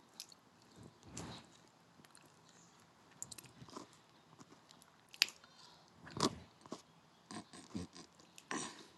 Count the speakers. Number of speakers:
zero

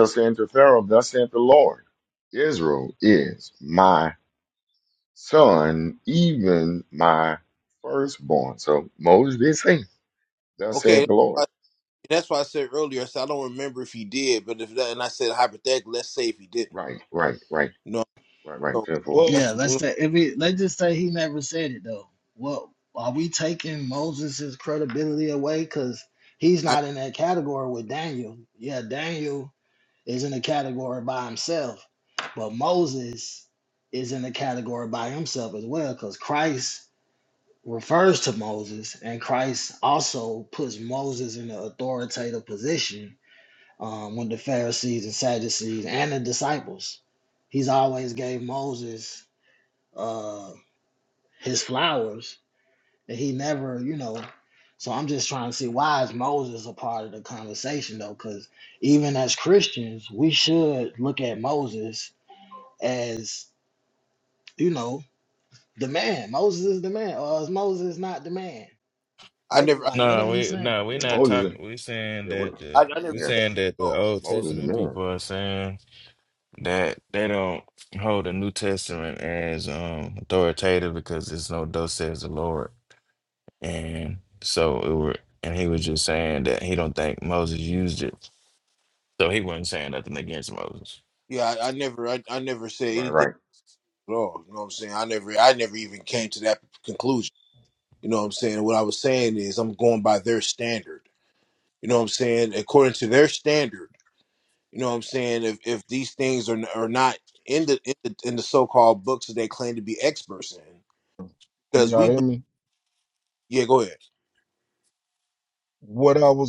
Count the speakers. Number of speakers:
five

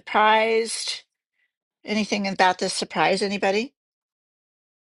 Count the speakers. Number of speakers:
one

